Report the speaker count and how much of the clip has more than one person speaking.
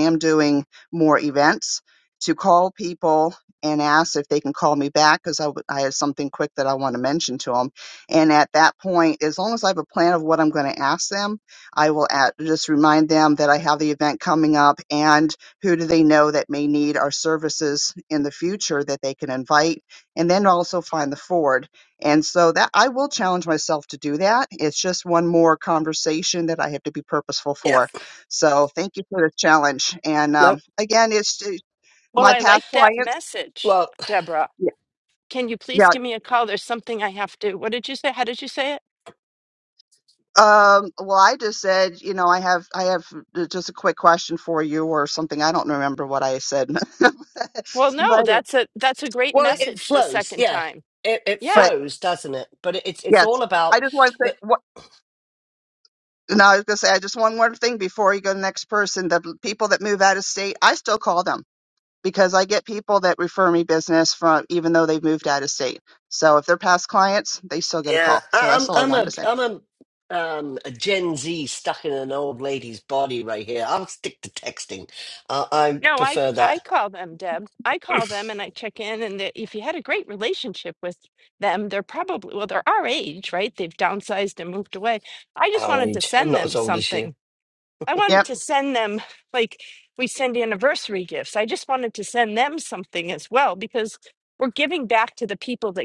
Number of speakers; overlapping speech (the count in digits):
3, about 8%